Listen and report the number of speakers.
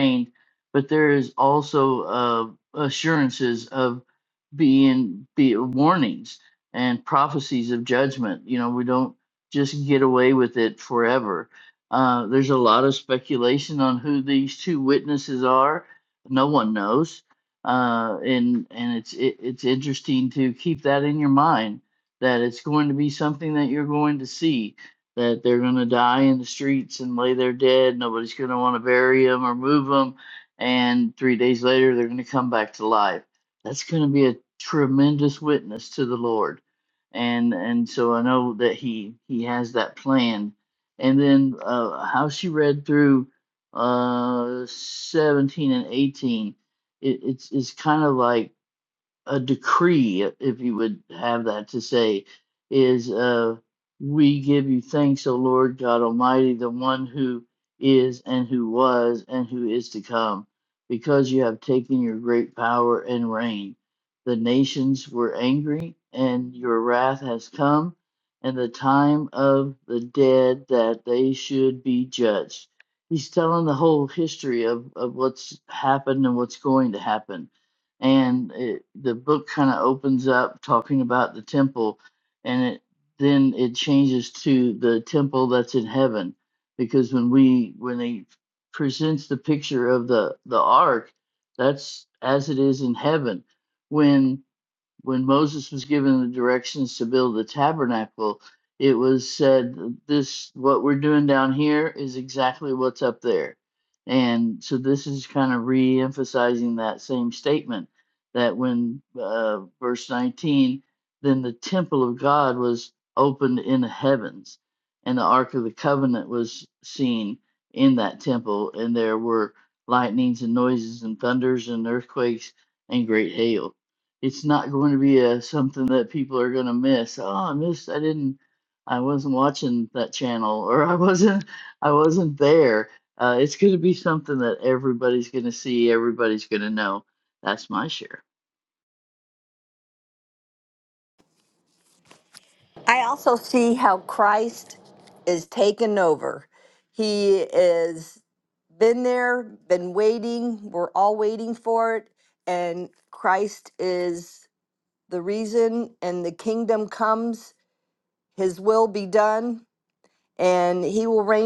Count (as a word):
two